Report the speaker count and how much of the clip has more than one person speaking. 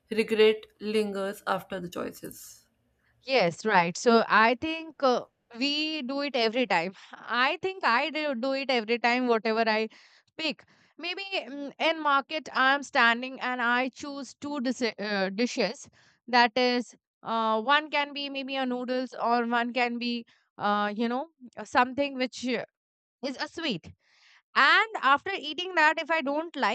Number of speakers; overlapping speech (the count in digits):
2, no overlap